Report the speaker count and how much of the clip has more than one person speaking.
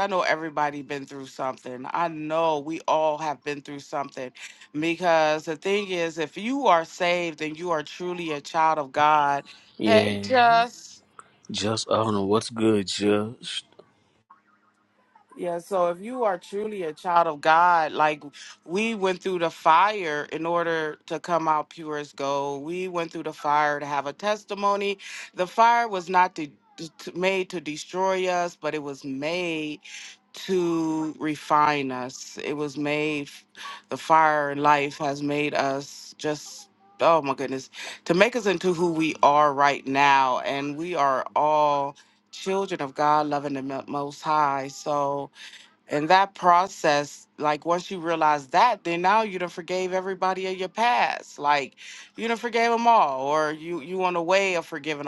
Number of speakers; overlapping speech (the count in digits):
2, about 1%